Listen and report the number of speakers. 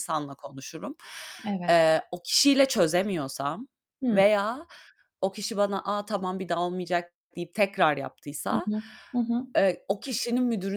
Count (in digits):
2